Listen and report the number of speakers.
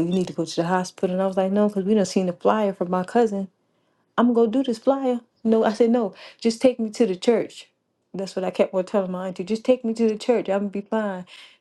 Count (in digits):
1